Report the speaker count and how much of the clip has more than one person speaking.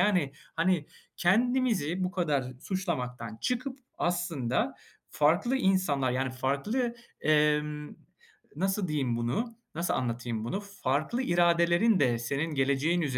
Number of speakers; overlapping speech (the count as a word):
one, no overlap